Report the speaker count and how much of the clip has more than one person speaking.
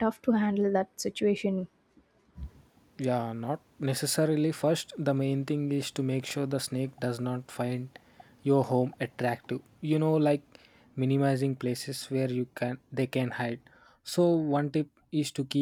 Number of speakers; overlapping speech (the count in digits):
2, no overlap